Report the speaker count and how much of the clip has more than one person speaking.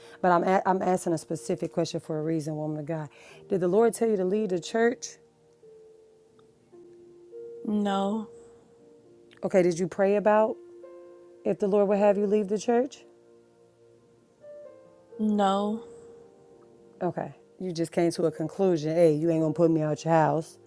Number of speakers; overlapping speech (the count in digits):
2, no overlap